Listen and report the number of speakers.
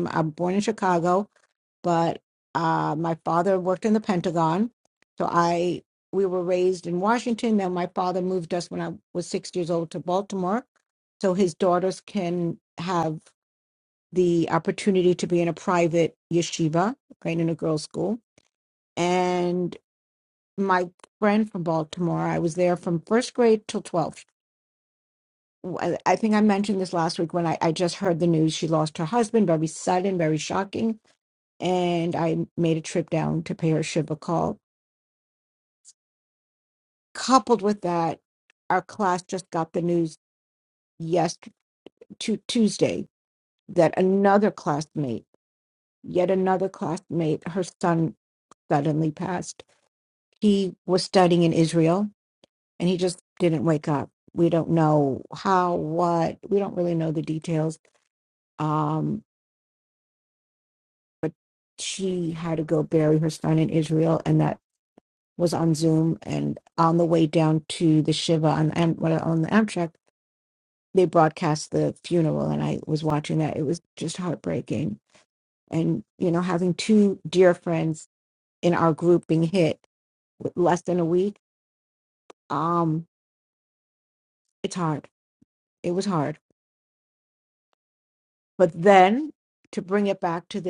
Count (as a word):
one